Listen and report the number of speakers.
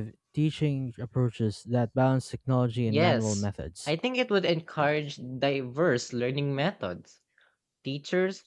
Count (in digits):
2